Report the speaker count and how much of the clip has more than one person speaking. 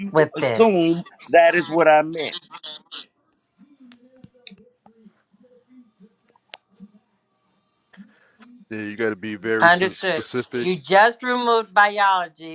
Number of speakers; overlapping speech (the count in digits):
3, about 12%